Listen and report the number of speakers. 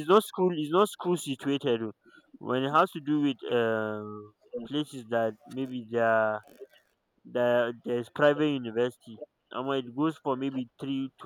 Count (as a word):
one